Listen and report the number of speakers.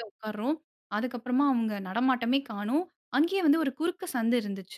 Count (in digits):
1